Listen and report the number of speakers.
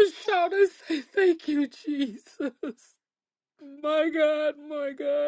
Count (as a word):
one